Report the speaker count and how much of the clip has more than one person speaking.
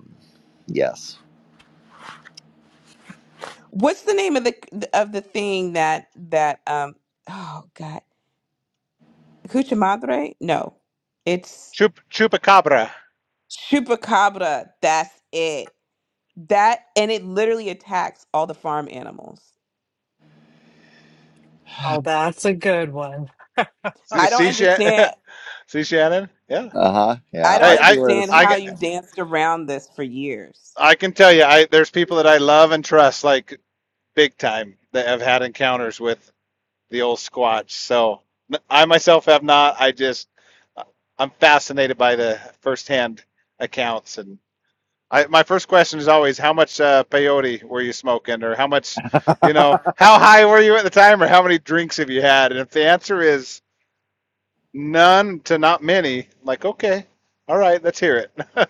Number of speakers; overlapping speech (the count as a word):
four, about 3%